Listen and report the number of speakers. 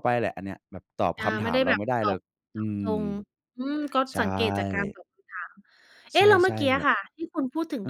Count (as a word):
two